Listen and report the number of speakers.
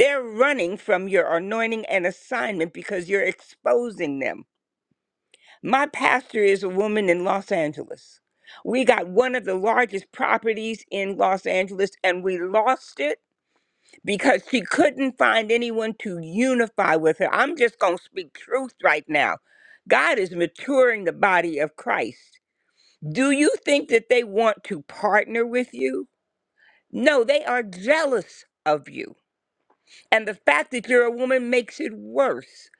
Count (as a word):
one